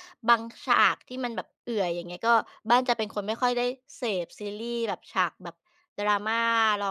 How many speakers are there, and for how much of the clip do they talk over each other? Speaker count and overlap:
1, no overlap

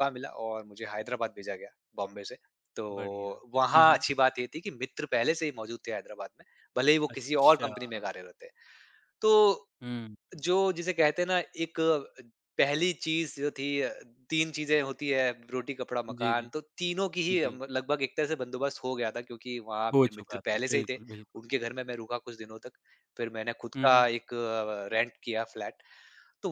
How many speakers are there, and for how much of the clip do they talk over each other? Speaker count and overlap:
2, about 11%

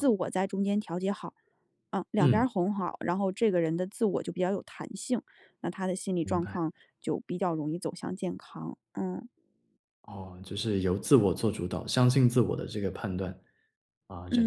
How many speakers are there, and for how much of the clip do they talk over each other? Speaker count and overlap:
2, about 6%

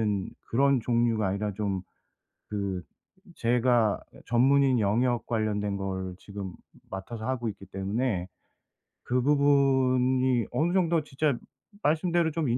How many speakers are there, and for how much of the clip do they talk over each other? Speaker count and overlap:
1, no overlap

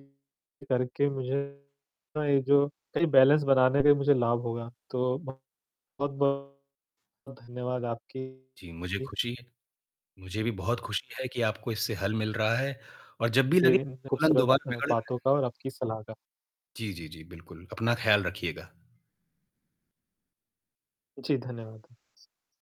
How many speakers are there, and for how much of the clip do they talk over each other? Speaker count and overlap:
2, about 5%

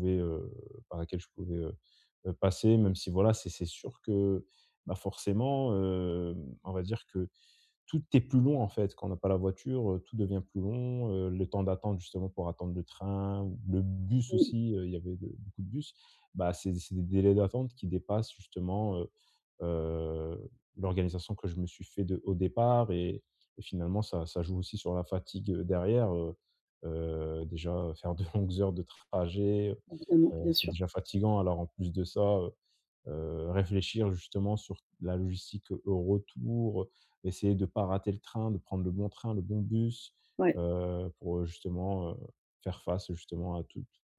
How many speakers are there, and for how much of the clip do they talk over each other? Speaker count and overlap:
2, about 2%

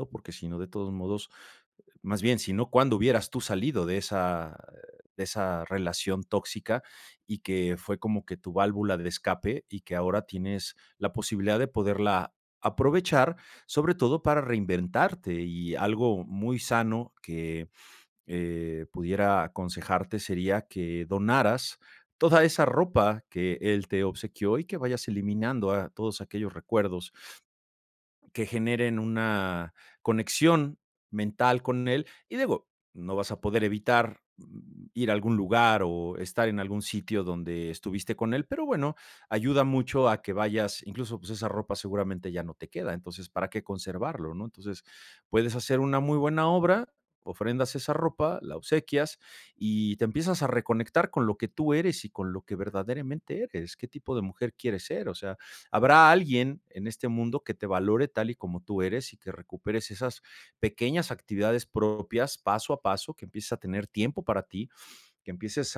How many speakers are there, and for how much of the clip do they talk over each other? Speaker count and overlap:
1, no overlap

